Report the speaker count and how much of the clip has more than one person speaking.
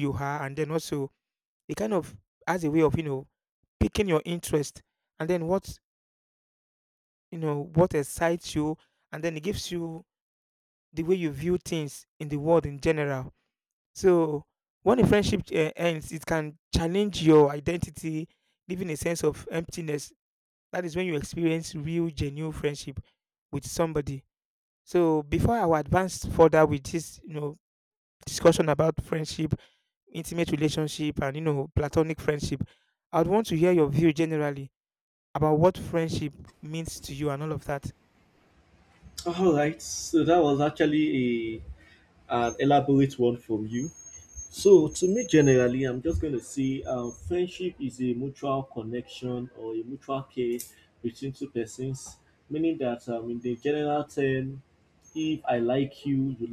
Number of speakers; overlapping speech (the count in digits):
2, no overlap